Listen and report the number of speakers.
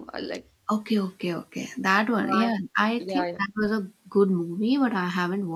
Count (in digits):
2